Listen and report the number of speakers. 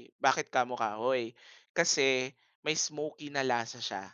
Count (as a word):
one